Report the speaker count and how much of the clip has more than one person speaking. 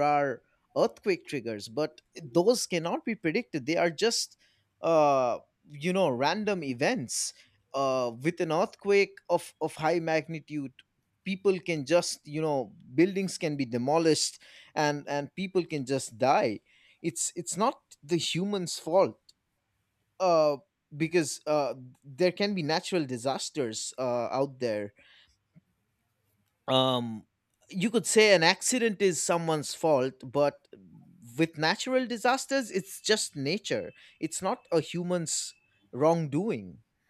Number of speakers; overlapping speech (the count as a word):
one, no overlap